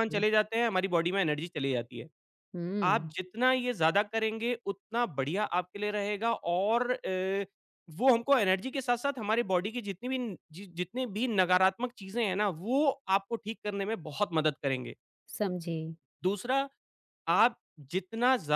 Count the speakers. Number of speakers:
two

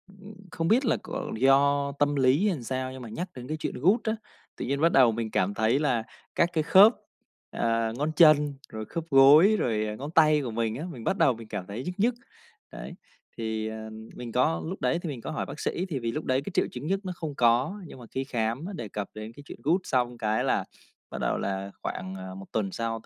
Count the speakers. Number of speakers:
one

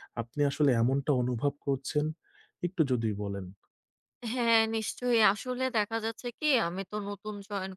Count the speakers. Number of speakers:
two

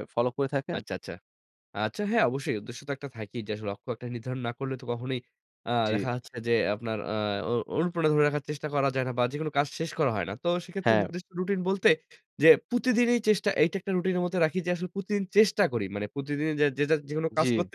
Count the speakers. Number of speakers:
two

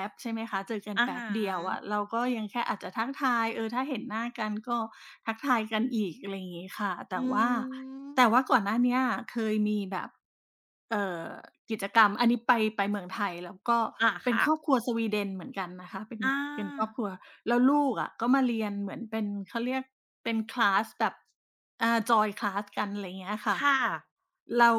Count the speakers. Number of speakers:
two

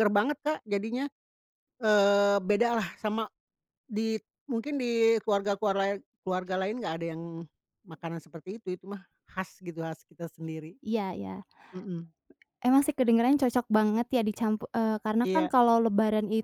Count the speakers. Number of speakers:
two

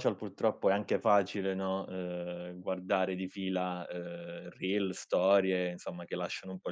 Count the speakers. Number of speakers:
one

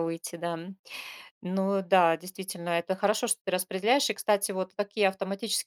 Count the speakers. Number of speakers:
one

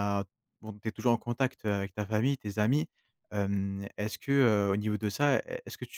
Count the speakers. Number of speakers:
one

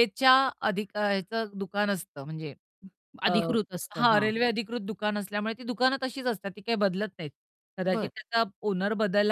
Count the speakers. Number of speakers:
two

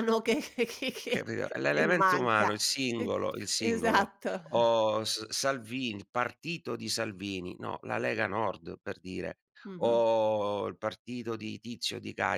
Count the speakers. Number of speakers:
two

